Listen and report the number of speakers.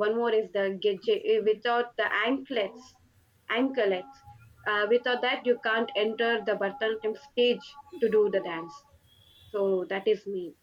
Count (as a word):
one